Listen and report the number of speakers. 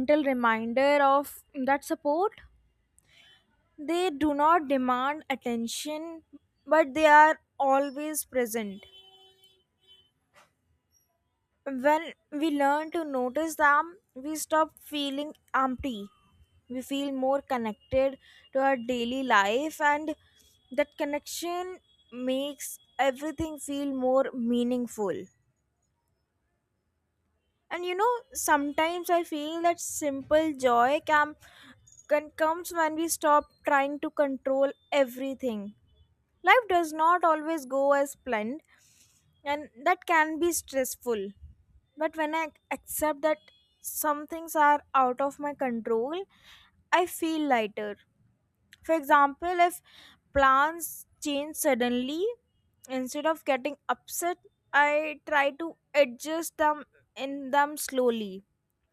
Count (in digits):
1